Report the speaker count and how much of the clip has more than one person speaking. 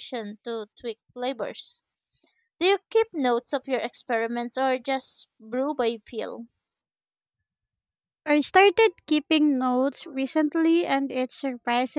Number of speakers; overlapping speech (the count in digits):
2, no overlap